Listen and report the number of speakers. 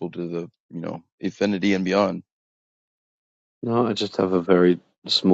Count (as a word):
two